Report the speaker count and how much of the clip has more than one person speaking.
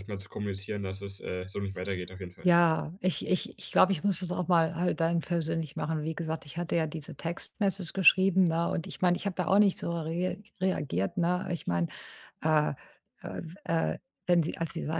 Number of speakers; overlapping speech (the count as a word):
two, under 1%